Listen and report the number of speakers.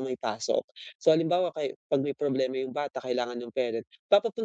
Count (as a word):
one